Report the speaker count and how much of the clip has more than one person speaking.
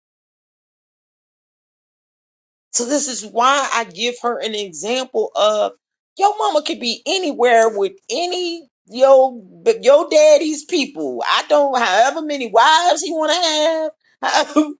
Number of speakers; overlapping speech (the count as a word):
one, no overlap